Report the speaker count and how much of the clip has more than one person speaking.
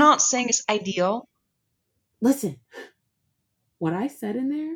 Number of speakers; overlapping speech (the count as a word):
two, no overlap